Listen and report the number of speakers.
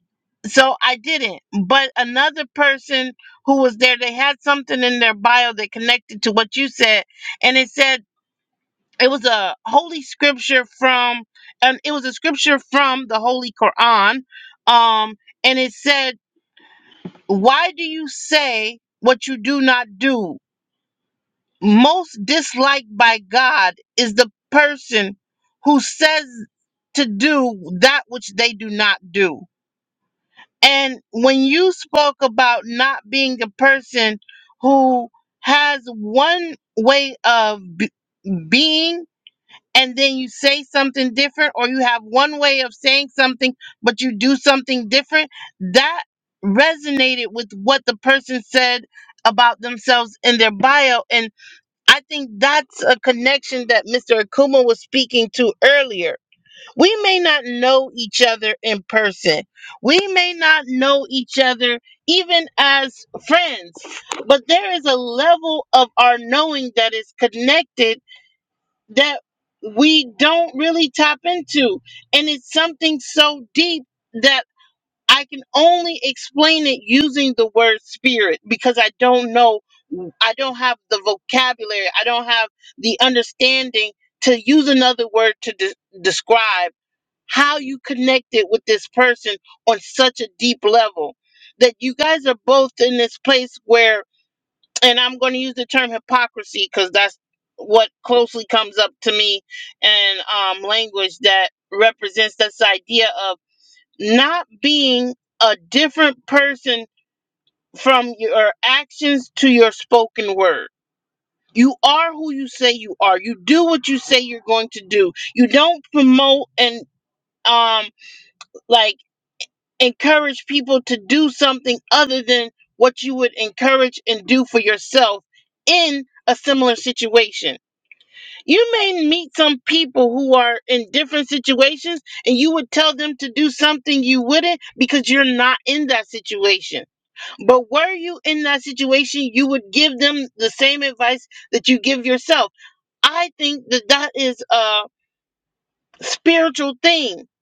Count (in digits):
1